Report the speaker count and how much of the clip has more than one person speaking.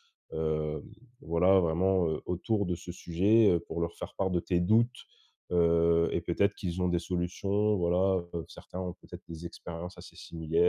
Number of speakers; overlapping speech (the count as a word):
one, no overlap